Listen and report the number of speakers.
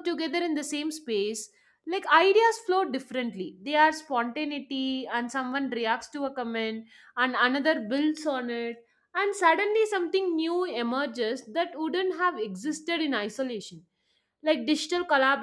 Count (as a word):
one